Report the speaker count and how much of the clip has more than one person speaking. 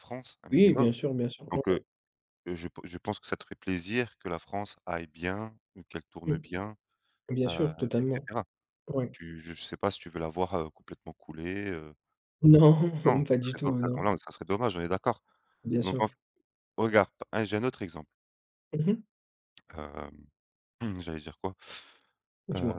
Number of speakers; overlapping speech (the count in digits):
2, about 13%